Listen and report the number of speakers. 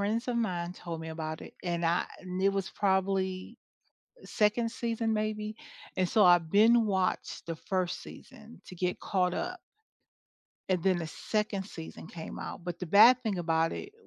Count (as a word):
one